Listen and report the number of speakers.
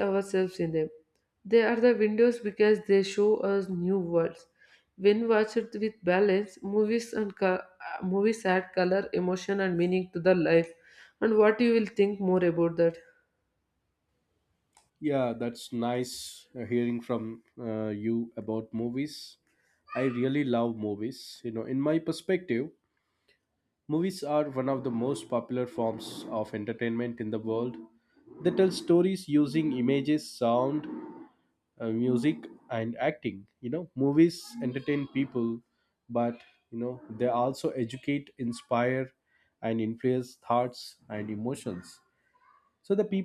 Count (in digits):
2